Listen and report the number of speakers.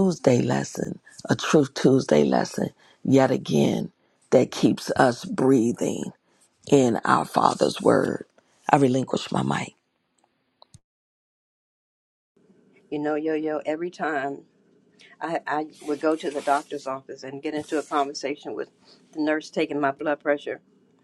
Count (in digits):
2